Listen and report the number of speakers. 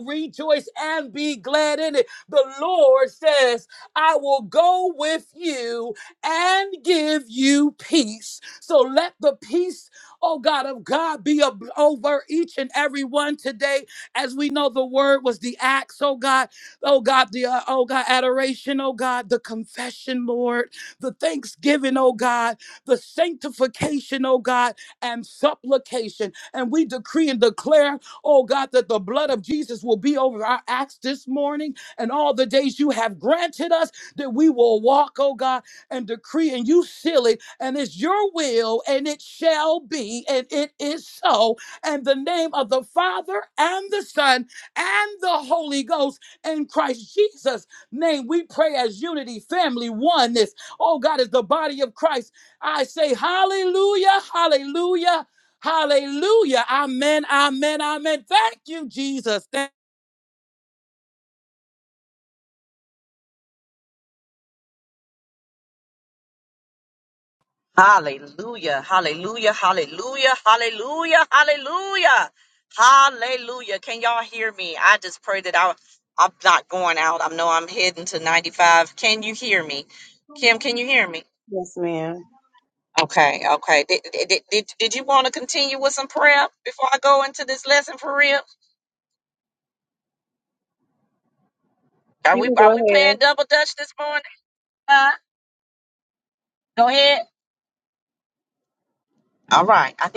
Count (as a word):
three